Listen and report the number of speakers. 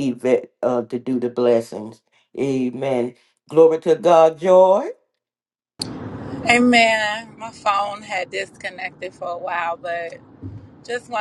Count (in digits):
2